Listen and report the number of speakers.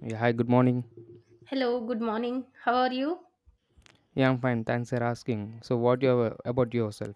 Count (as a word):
two